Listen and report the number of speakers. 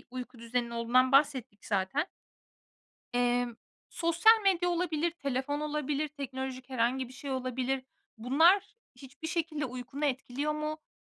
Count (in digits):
1